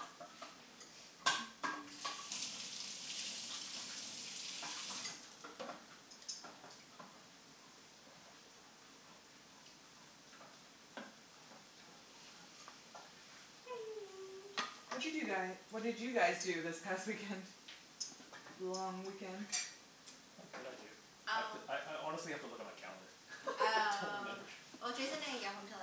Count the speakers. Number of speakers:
3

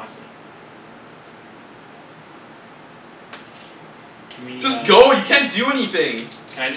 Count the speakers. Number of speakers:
2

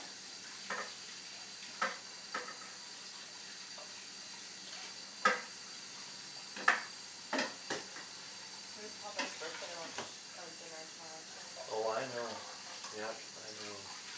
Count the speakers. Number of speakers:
2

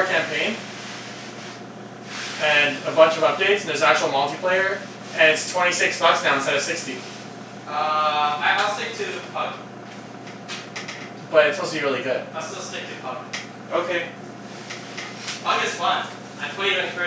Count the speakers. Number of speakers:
2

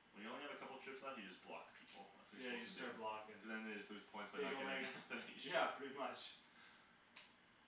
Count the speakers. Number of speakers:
2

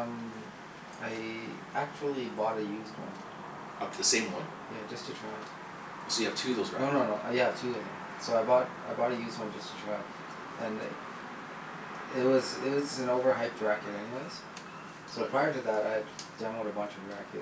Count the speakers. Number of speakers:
2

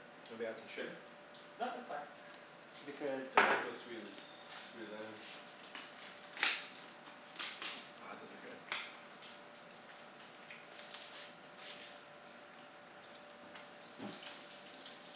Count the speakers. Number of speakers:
3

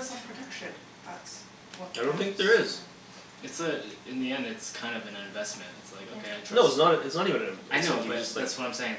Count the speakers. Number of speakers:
3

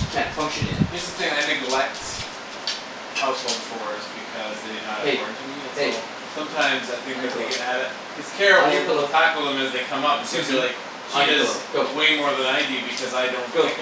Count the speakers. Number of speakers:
2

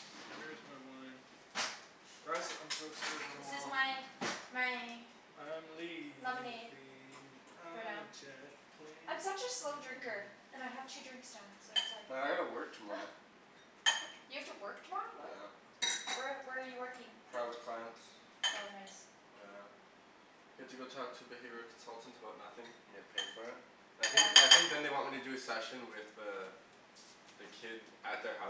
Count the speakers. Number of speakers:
3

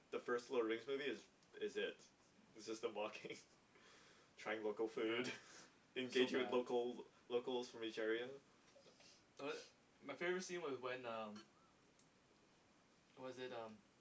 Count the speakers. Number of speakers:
2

